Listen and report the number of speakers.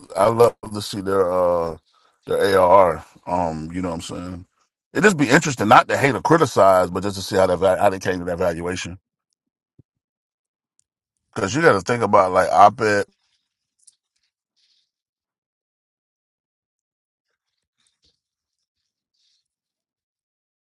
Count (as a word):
one